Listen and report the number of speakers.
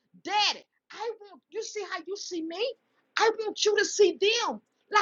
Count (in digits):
1